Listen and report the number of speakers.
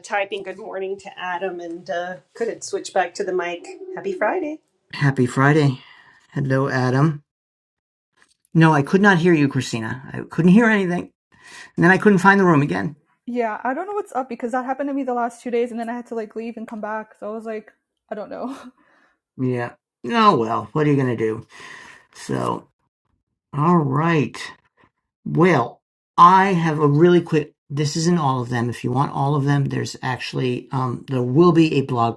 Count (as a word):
three